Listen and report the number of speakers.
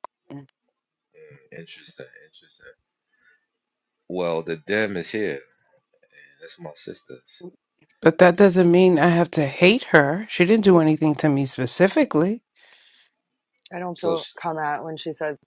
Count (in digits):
3